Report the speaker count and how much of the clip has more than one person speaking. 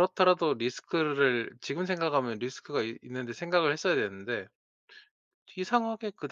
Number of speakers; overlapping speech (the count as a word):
one, no overlap